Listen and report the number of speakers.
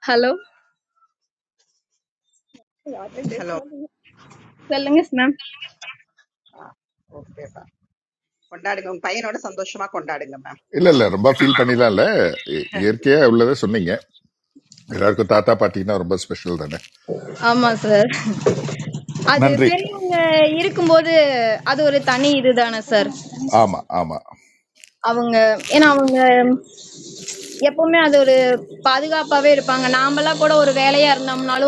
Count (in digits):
3